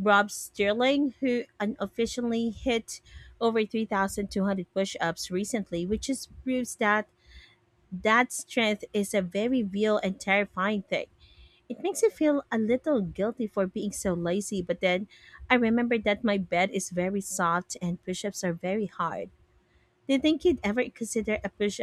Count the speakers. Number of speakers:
one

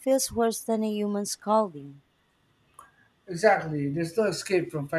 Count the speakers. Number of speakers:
two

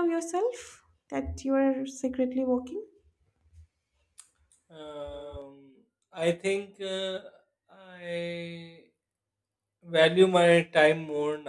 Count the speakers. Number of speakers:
two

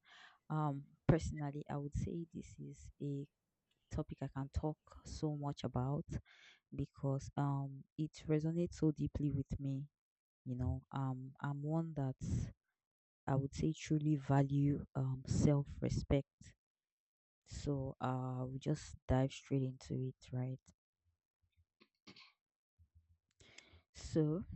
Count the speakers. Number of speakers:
one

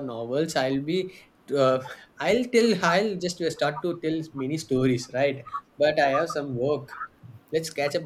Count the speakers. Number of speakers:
one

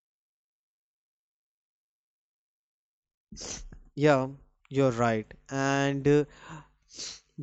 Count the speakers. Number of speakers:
one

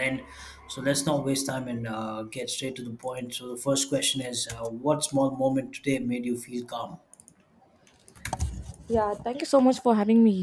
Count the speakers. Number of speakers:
two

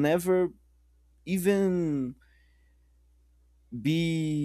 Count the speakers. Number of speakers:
one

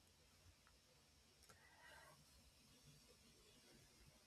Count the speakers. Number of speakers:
zero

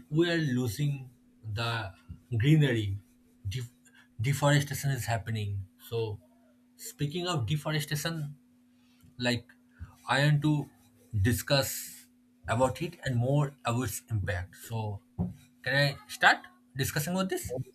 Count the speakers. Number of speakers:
one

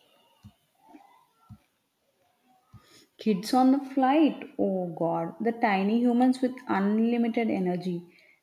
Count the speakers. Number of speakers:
one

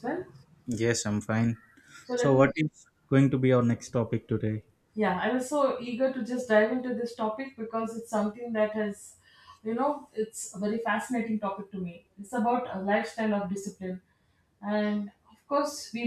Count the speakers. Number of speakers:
two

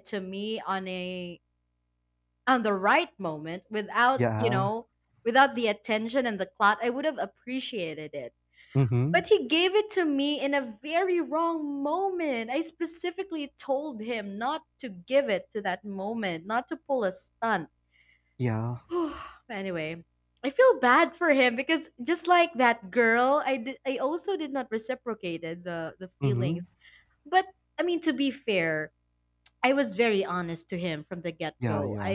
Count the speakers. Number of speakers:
two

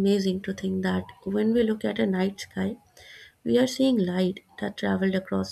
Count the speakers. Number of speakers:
one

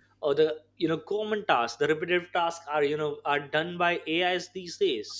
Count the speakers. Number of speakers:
one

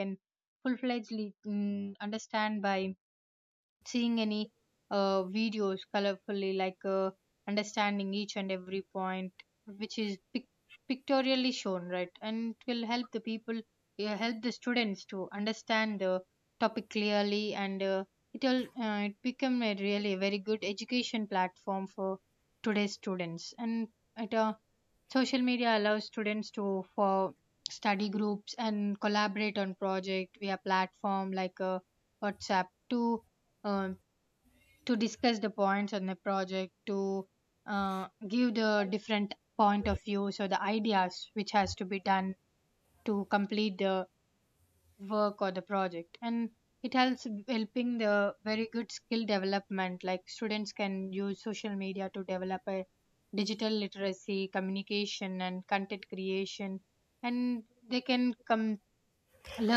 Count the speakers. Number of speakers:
one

